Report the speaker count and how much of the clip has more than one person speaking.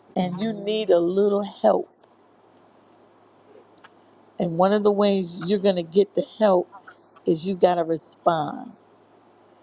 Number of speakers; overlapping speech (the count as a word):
one, no overlap